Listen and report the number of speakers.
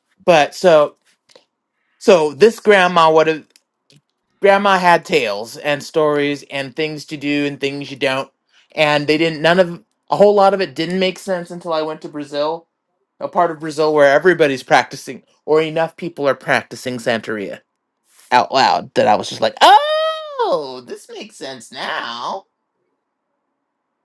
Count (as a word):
one